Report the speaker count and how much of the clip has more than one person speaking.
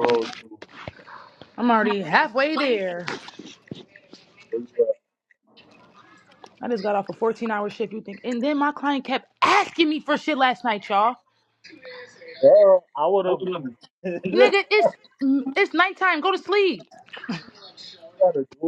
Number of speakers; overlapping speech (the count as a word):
two, about 1%